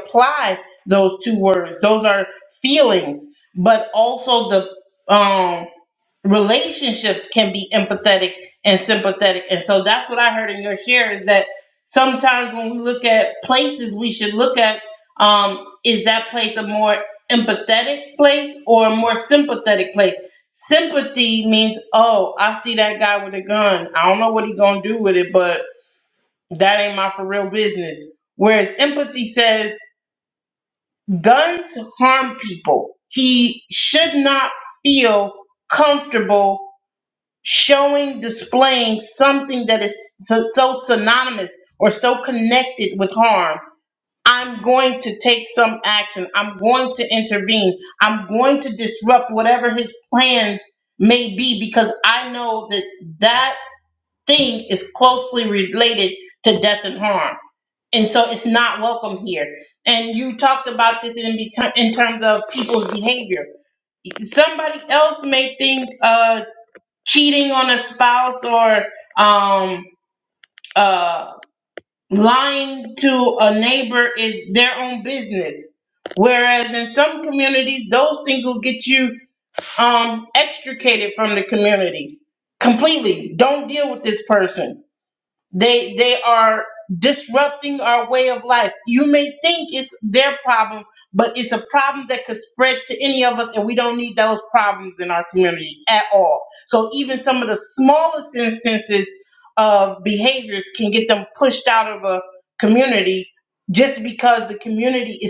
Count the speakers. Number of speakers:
1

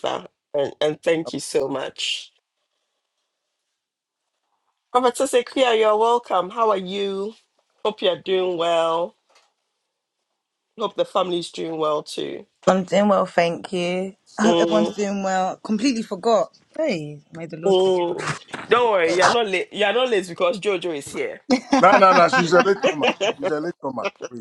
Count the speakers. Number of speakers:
3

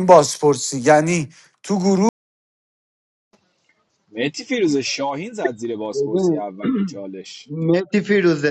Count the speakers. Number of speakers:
3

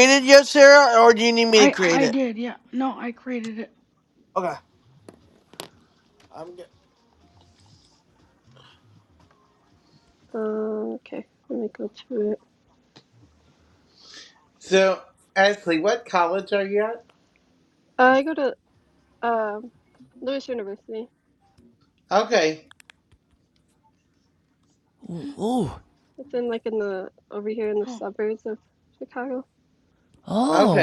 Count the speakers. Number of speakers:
5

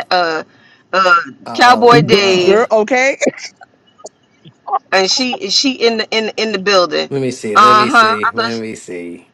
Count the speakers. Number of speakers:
3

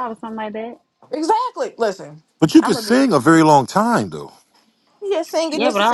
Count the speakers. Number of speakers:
3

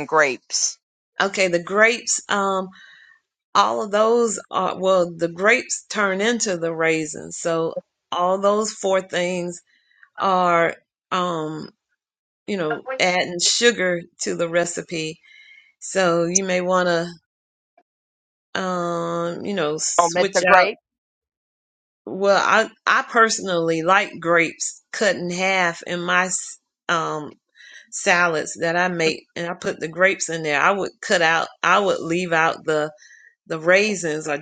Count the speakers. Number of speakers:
2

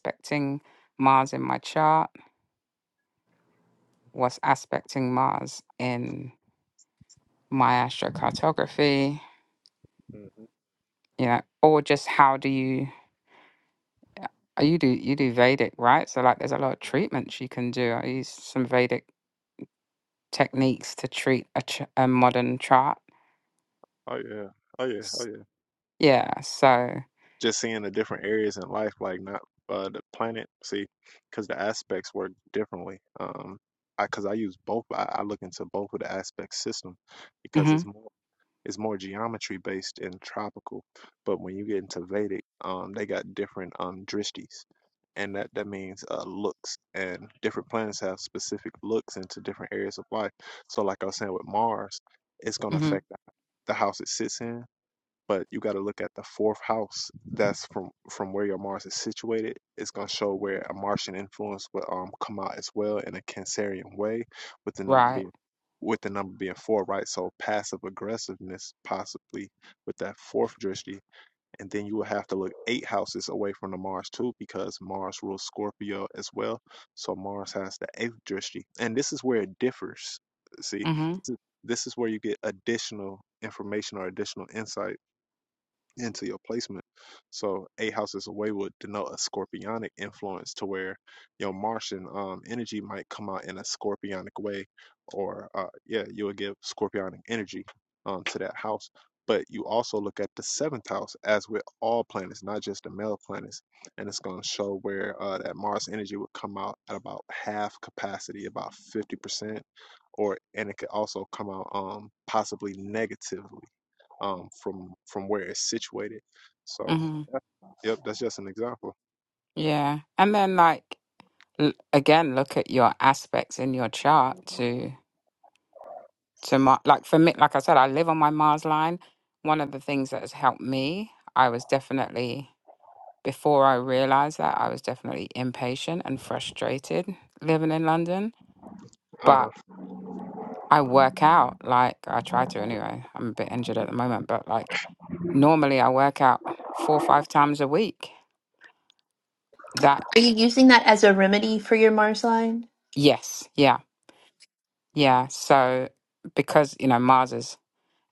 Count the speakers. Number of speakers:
3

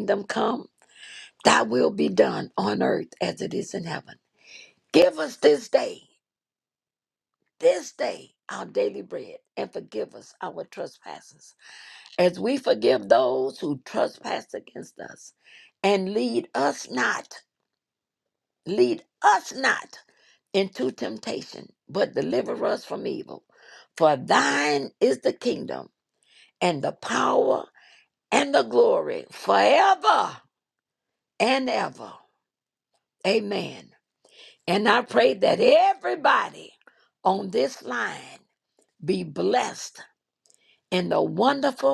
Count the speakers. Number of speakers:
1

